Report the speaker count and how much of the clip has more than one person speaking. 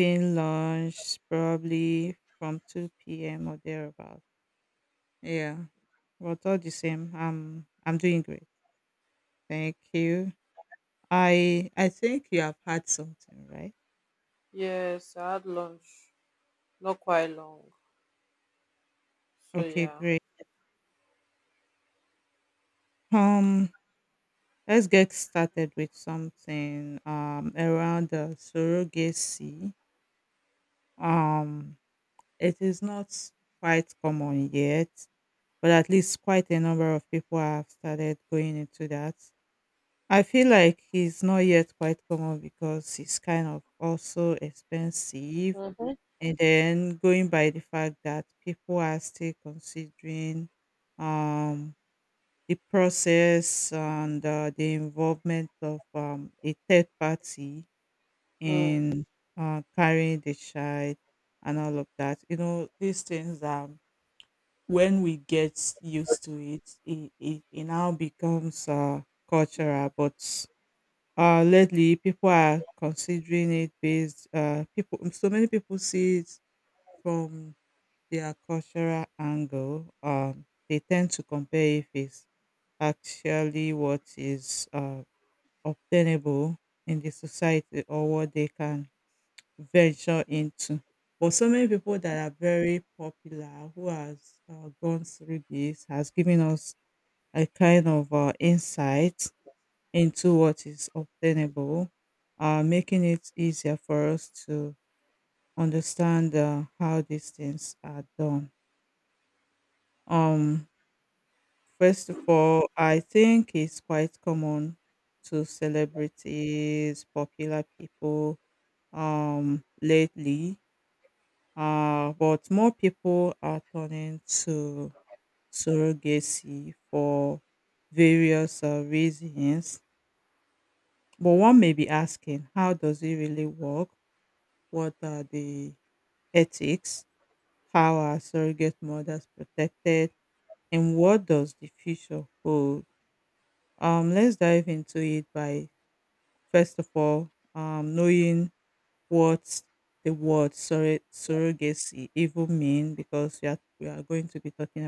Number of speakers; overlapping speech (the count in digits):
2, about 1%